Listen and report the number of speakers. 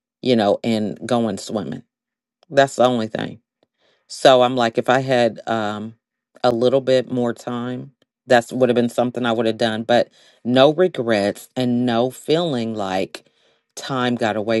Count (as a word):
one